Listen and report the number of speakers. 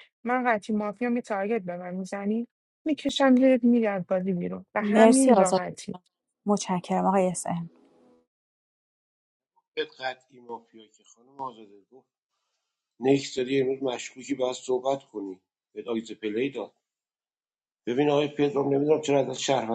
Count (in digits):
3